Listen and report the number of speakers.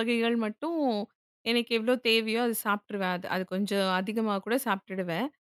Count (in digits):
1